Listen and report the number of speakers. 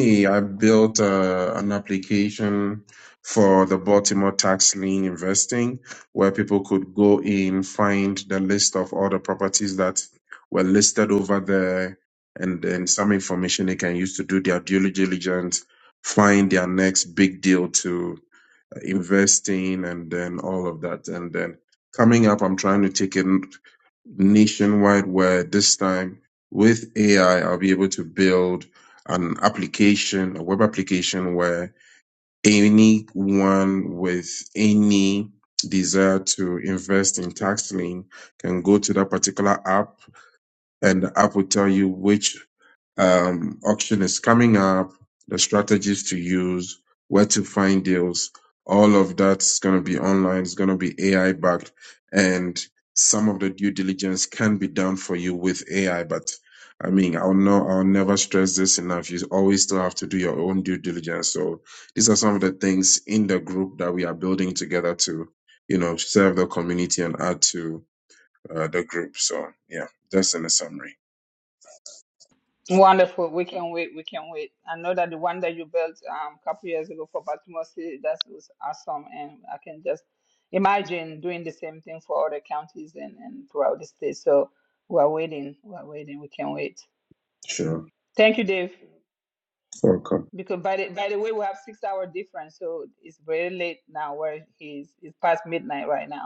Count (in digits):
2